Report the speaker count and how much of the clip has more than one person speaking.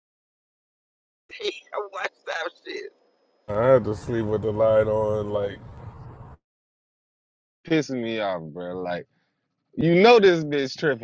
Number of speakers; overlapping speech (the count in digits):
3, no overlap